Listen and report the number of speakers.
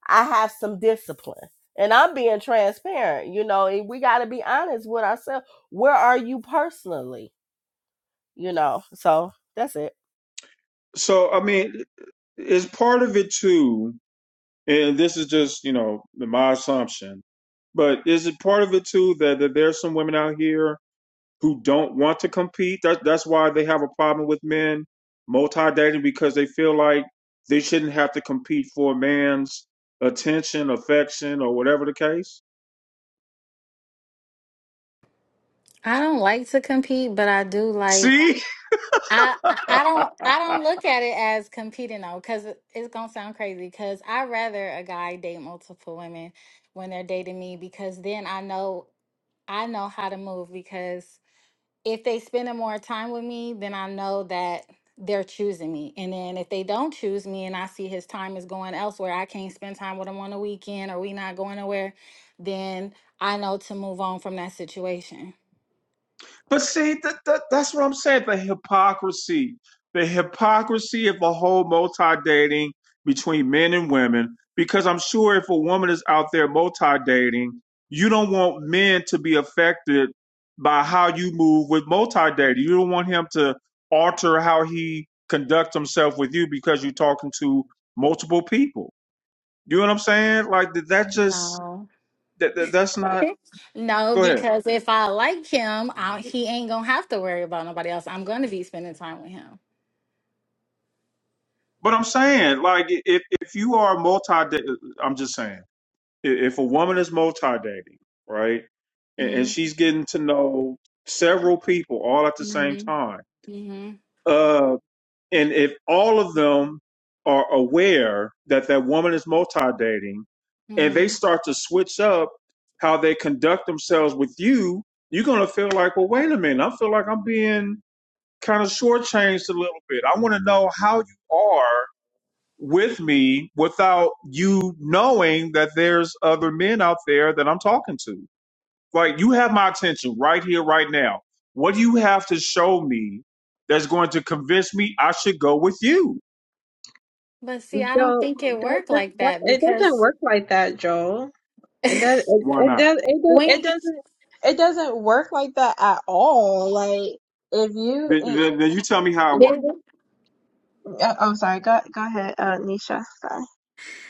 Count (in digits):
4